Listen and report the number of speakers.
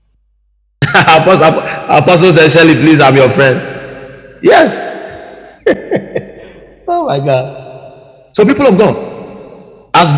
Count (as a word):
one